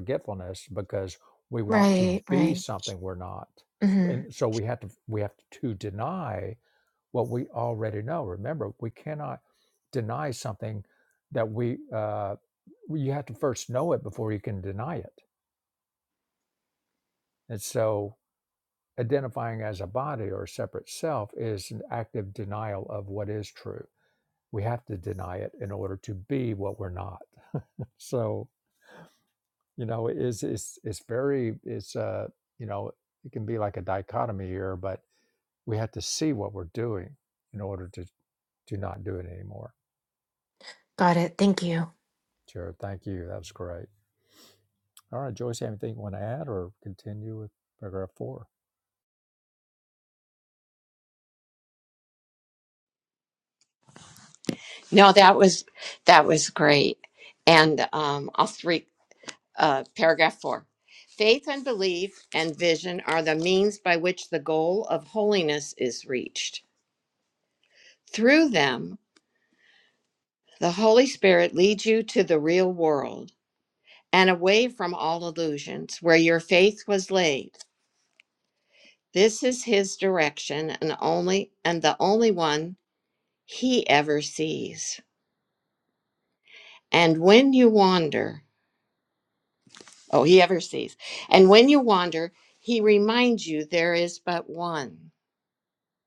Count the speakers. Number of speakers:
3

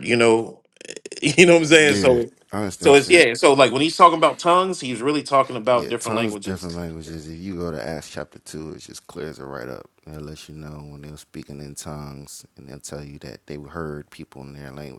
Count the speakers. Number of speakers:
2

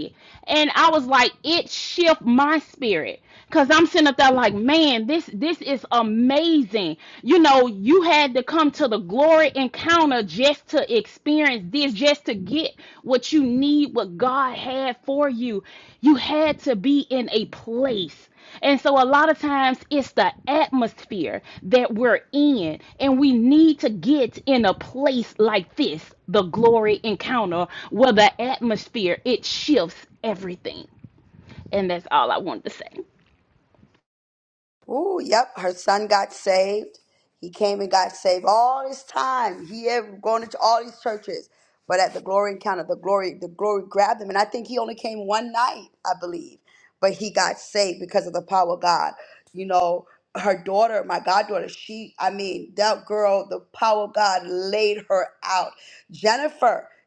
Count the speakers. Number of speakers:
2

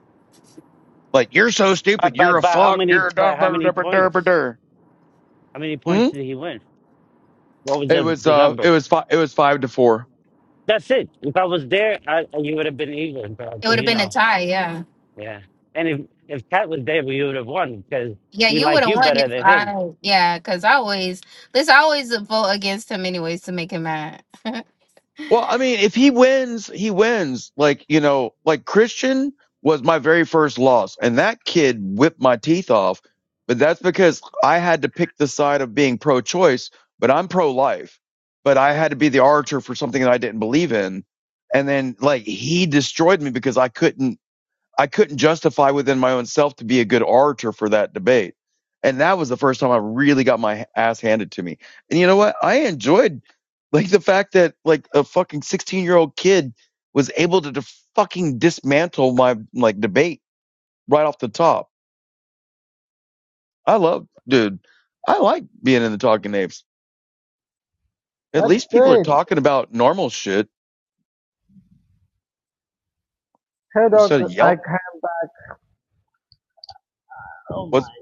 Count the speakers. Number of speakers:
4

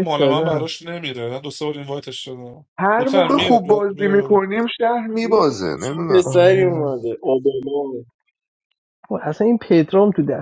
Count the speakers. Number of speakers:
4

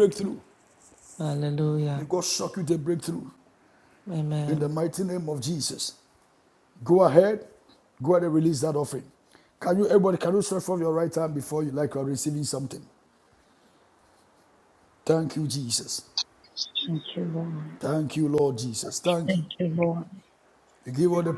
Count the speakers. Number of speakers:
3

